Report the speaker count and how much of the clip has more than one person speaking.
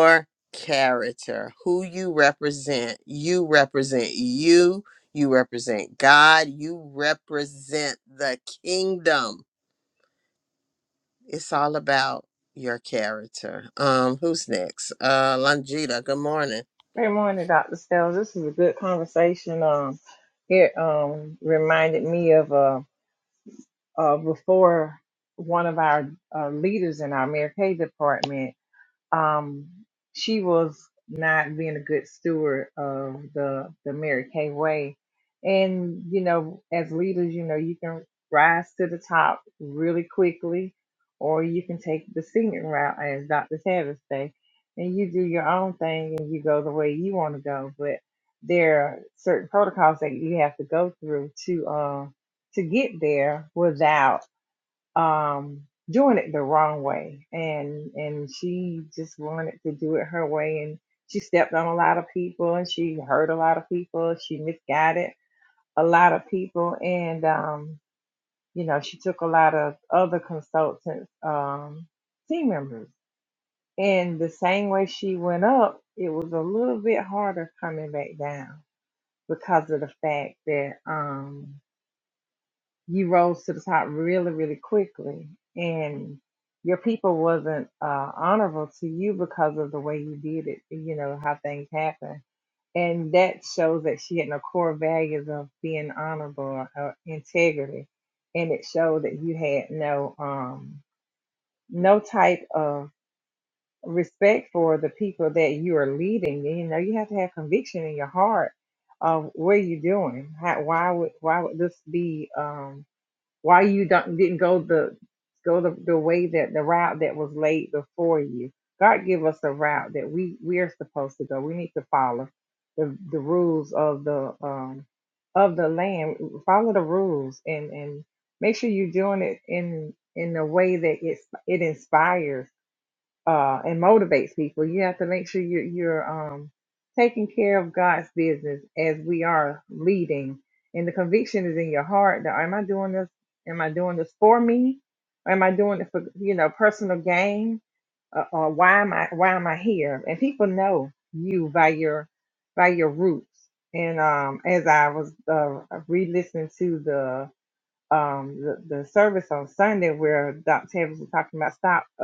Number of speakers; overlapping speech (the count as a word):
two, no overlap